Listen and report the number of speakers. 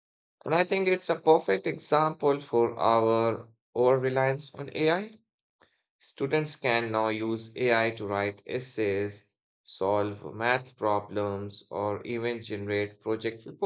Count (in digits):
1